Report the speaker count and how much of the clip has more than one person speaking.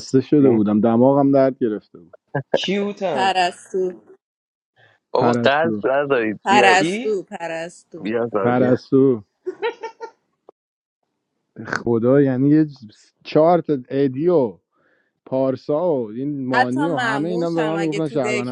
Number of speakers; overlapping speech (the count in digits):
4, about 21%